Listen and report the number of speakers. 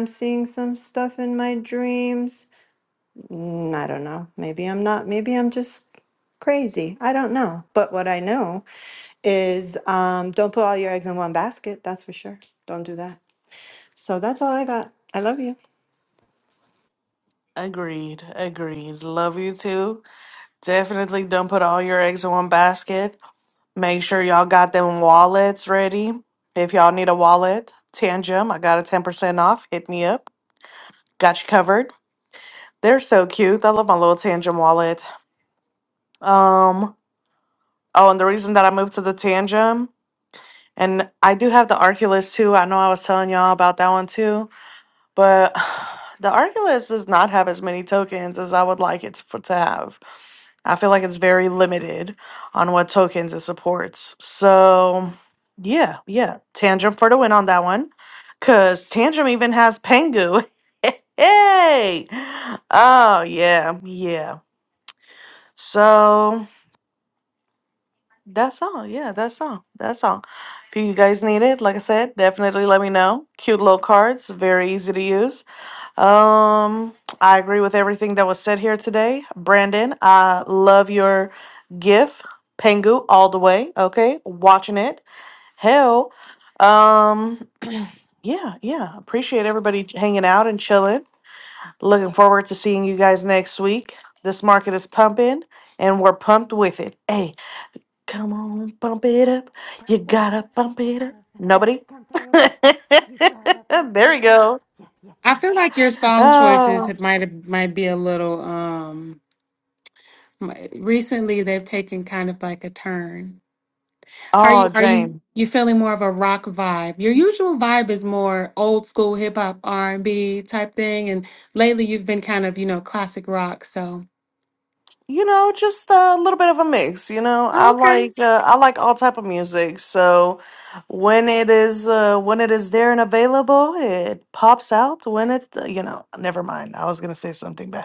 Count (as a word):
three